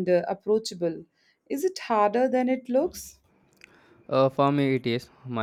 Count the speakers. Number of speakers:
2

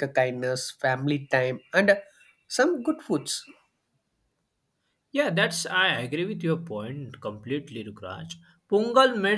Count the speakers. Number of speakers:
2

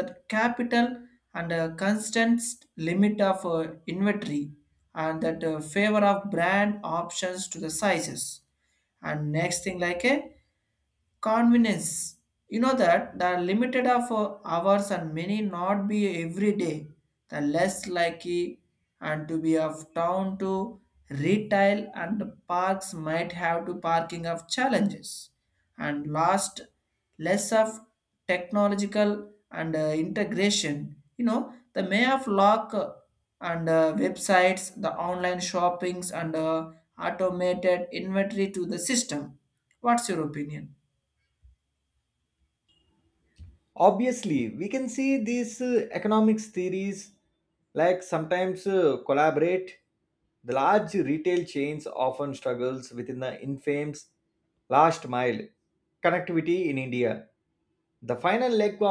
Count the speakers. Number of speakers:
2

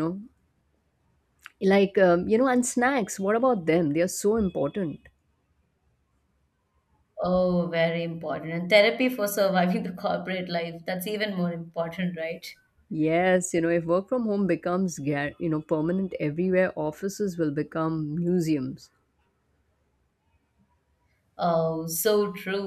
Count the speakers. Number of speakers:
2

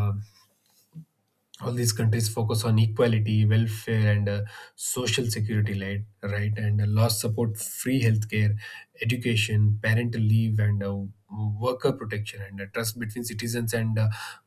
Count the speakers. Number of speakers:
1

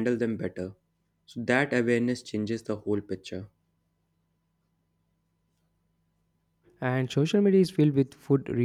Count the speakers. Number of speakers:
2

